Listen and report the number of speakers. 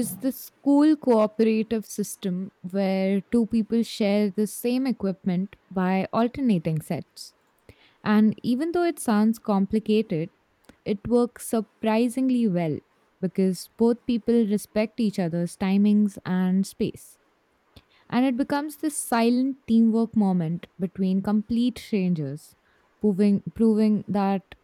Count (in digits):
1